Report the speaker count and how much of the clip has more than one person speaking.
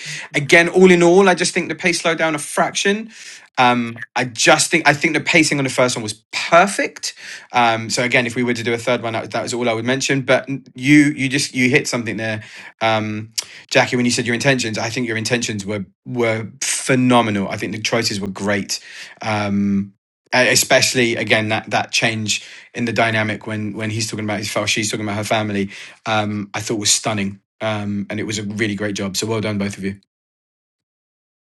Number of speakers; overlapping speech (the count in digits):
1, no overlap